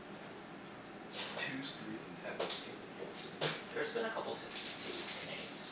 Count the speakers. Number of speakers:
2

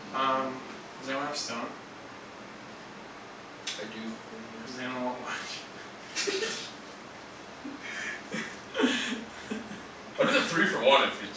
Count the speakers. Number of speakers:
2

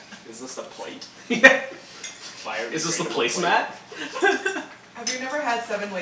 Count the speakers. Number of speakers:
3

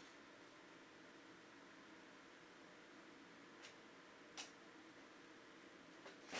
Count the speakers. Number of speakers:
0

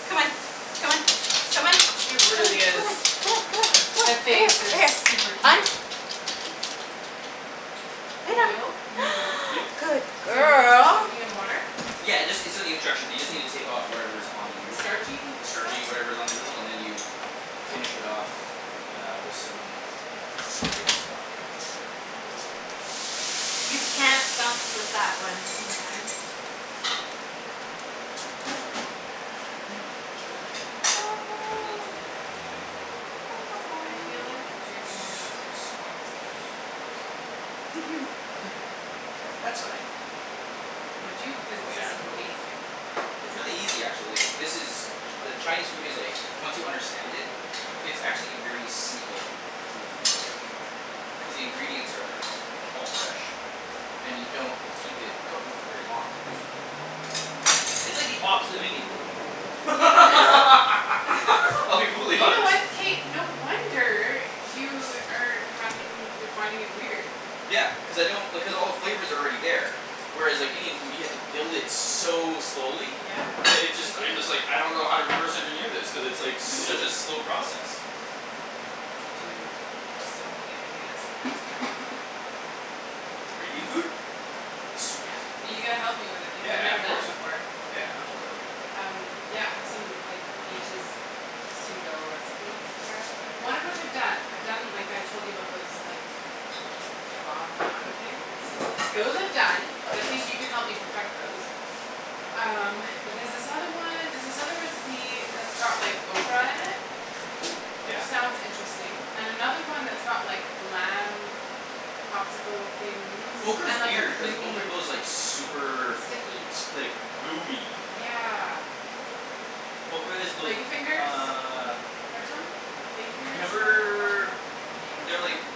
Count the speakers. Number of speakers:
3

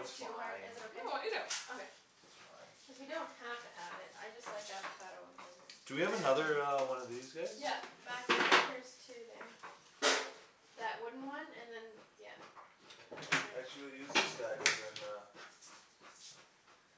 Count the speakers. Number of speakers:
3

